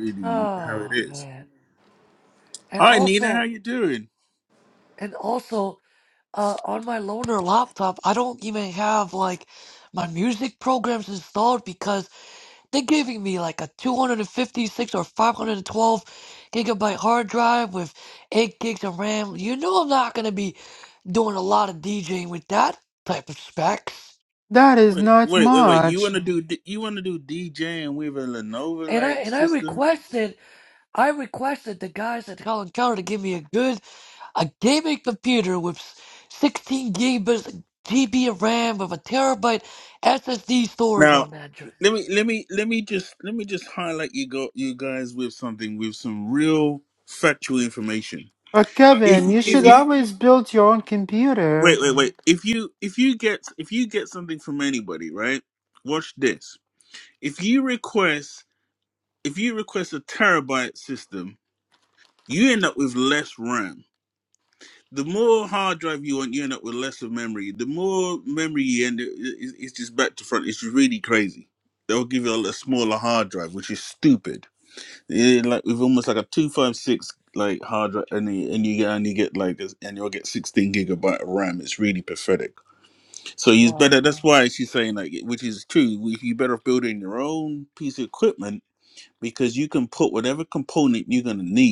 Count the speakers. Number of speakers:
3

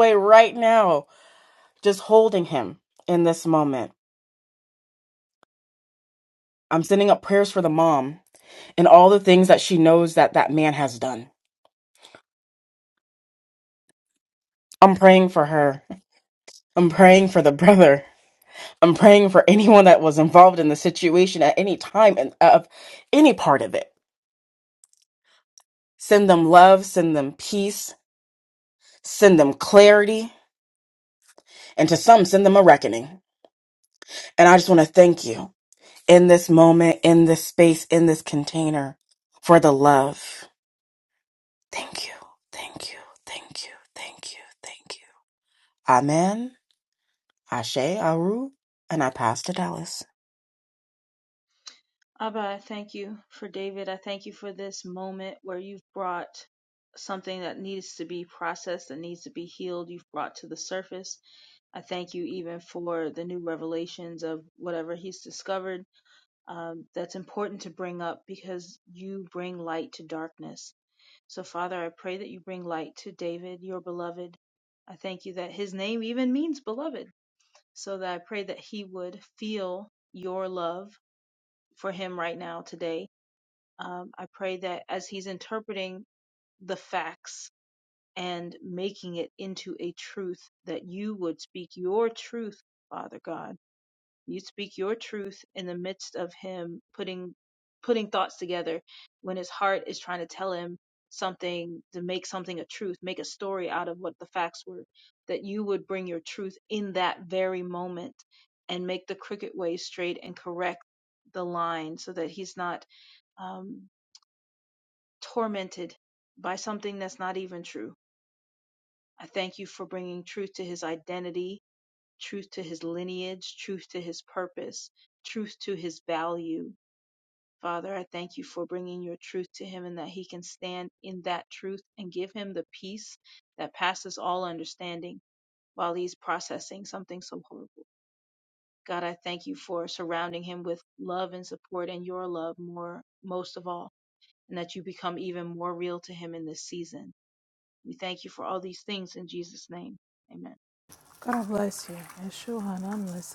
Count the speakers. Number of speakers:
3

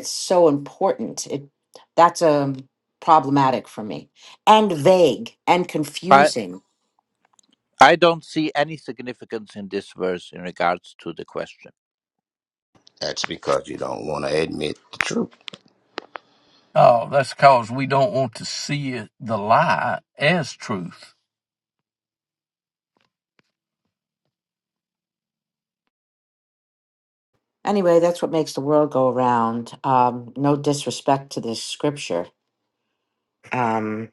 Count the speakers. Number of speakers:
4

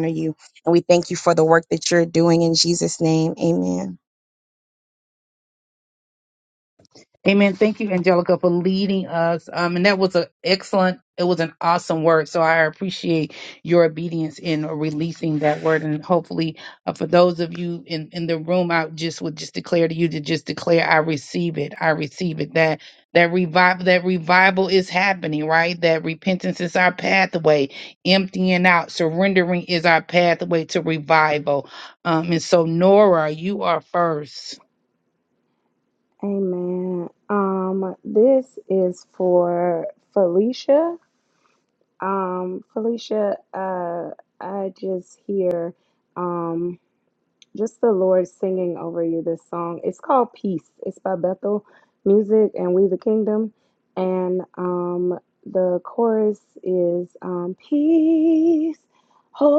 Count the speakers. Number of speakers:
3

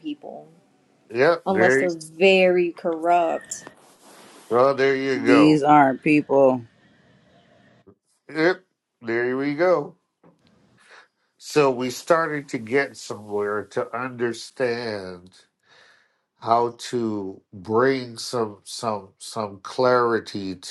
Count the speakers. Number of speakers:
3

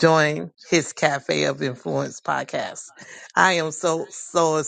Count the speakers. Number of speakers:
1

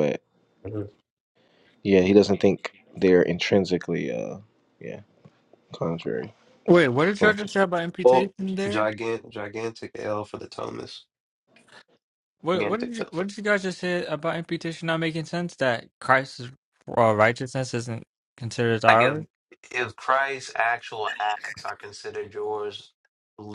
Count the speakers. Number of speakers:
3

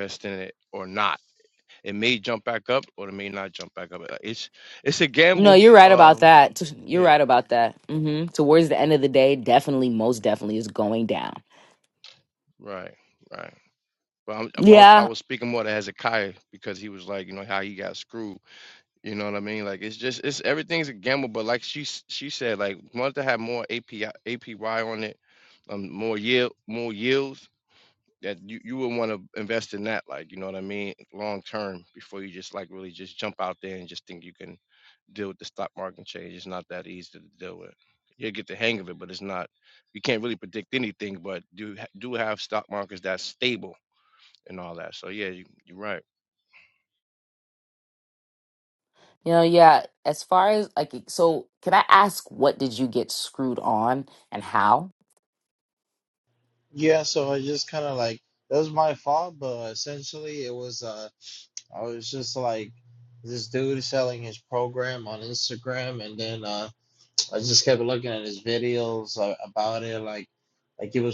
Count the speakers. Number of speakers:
3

